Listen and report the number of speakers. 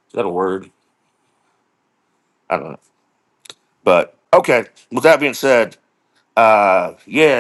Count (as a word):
one